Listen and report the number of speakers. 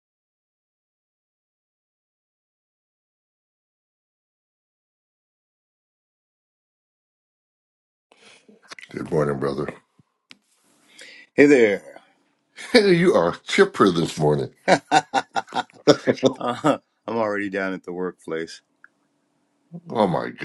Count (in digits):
2